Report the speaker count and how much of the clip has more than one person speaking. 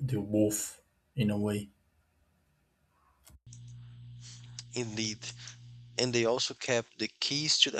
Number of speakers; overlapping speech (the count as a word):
two, no overlap